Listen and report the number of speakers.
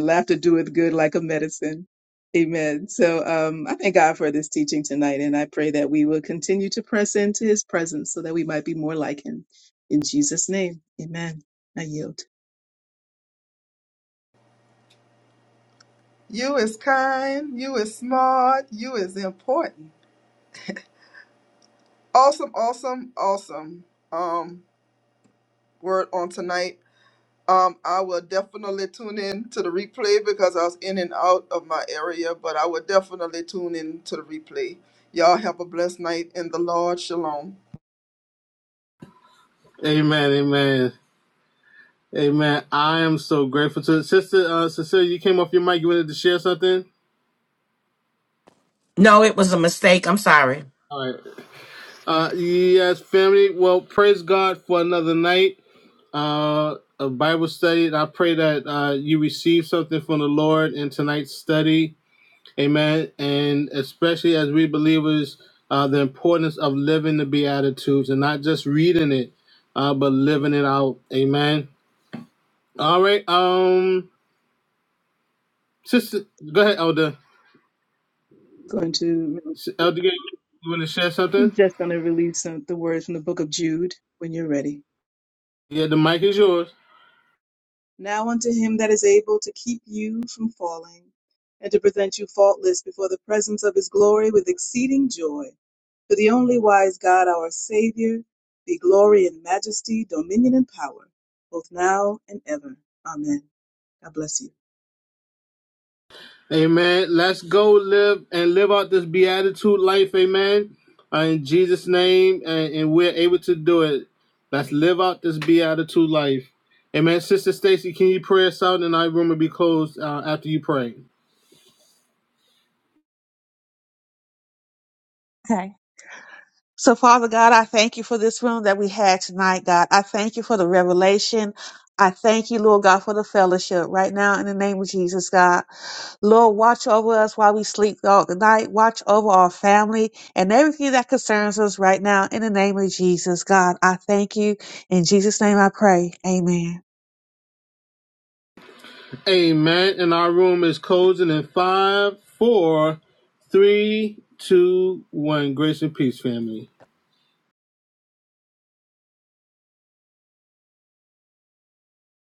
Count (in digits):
5